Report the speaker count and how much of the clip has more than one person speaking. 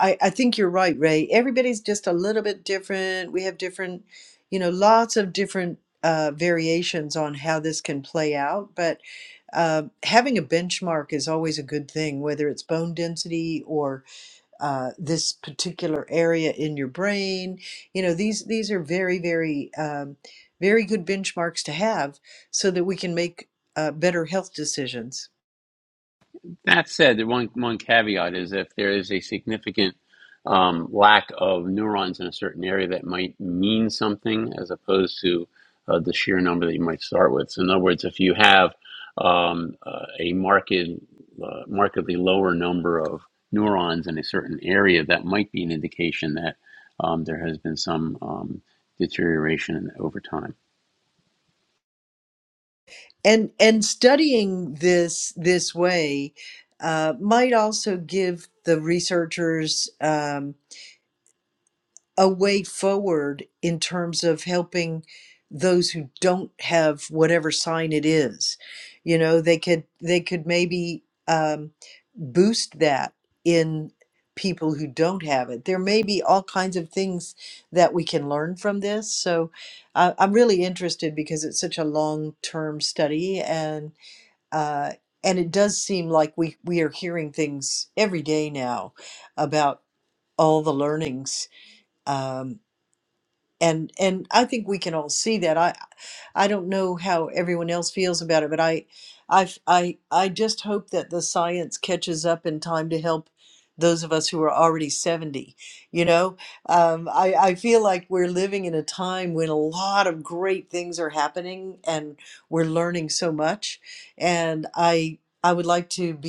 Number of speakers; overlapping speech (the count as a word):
two, no overlap